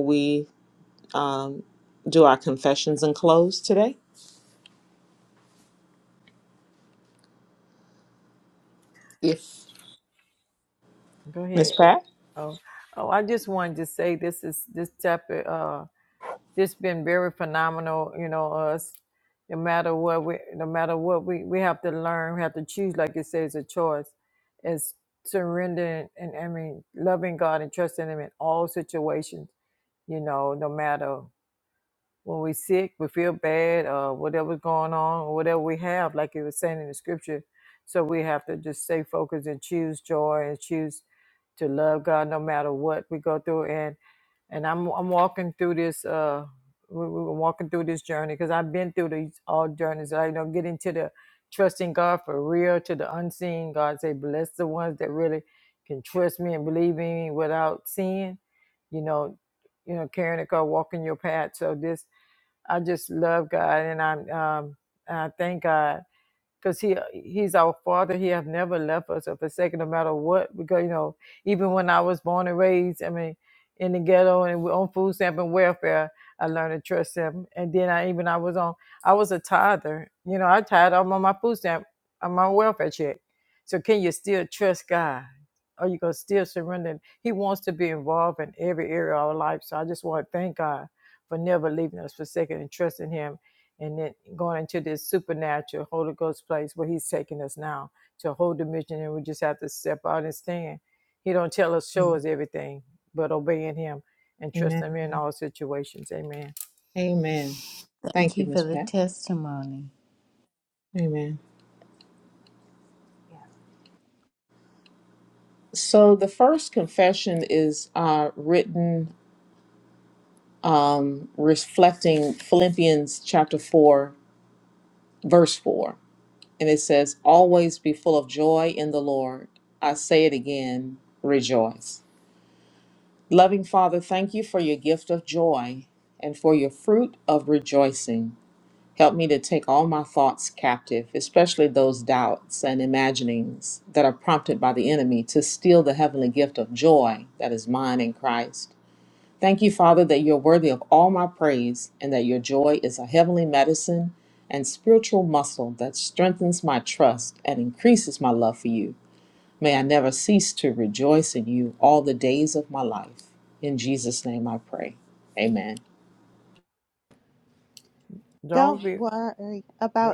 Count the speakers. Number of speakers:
four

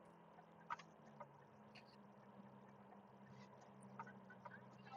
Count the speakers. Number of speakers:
zero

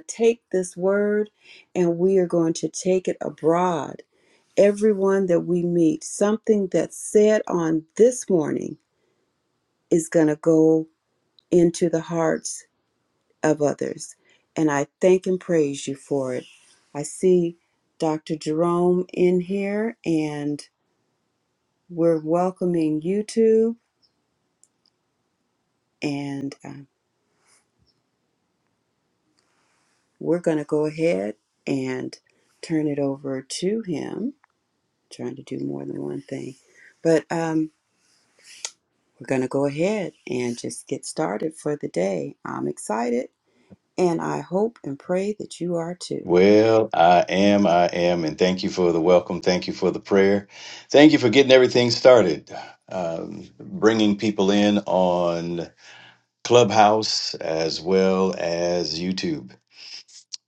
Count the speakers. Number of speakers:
two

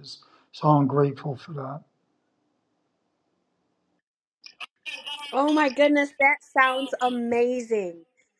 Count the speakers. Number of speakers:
two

